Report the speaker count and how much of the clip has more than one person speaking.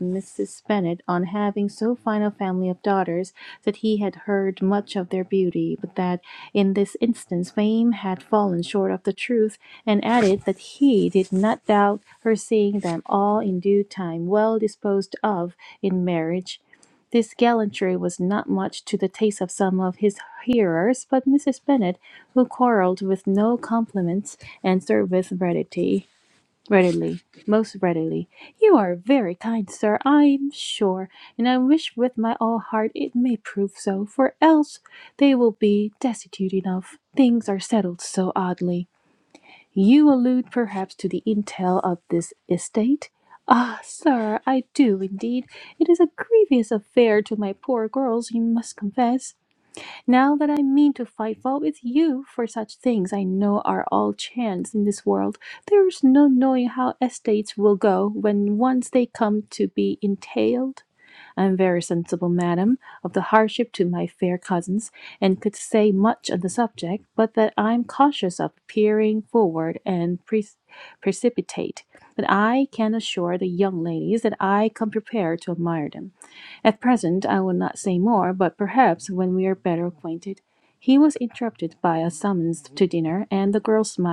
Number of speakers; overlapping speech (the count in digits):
1, no overlap